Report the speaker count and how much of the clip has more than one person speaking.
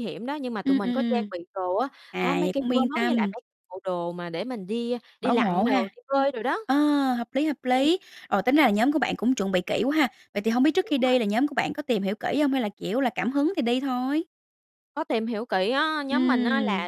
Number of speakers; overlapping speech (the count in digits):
2, about 22%